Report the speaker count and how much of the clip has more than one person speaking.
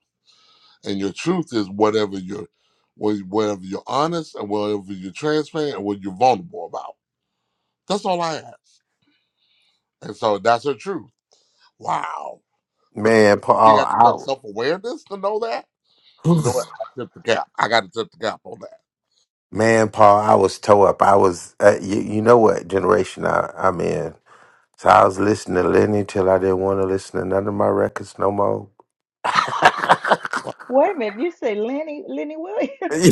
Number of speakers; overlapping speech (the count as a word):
three, about 2%